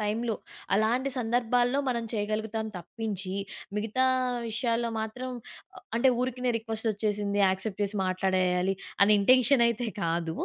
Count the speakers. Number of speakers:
1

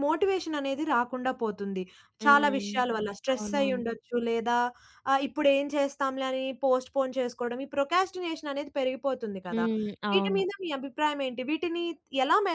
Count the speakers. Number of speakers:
2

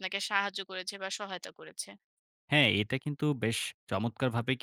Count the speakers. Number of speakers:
2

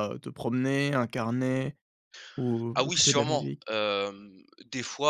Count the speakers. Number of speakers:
2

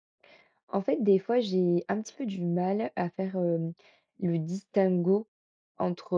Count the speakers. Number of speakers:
1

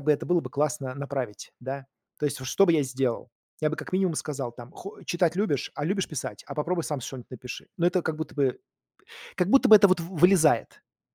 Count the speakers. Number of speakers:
1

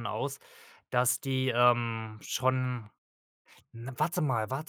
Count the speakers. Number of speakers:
1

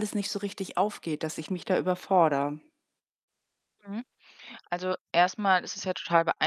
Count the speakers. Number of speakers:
2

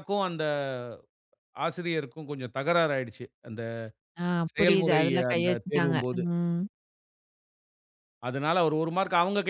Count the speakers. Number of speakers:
2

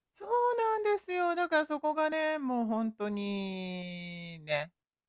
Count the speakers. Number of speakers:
1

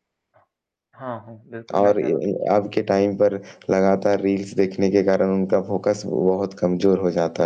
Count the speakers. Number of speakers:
2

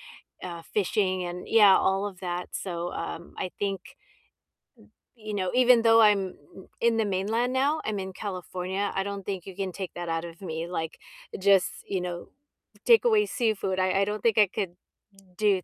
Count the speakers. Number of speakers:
1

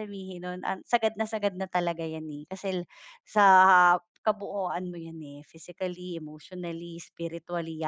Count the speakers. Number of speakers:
1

